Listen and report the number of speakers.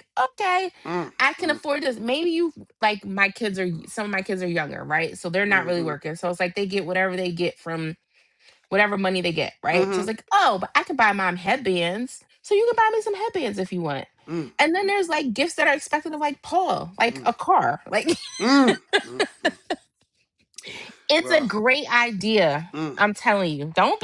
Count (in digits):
2